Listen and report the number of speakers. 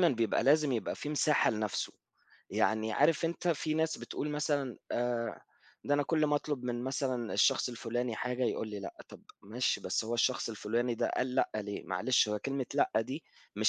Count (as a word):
one